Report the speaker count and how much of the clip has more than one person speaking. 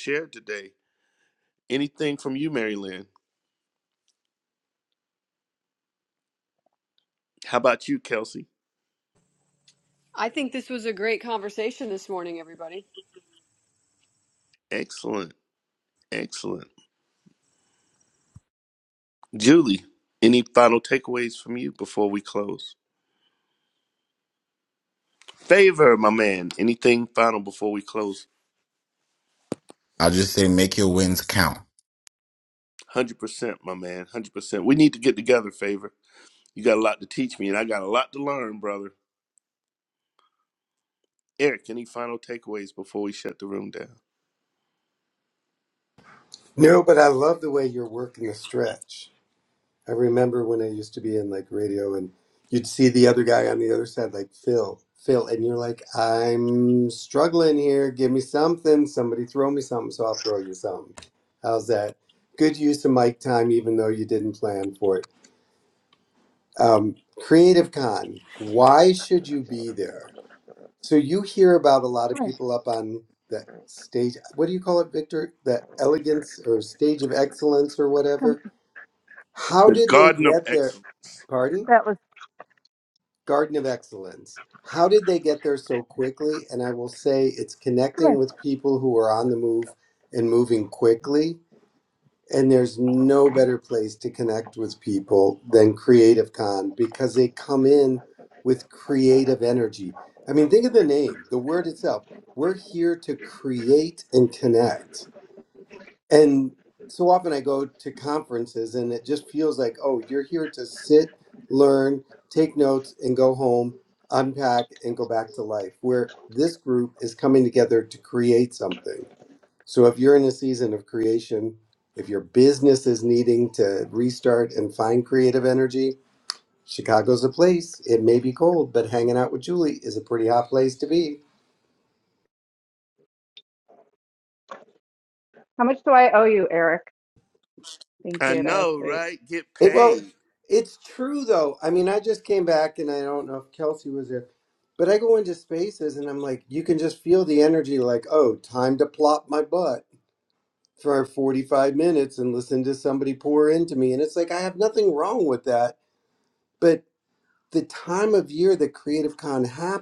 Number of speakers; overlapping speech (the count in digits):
5, about 2%